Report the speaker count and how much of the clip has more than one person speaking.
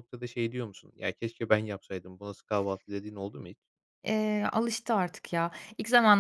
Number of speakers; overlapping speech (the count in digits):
2, no overlap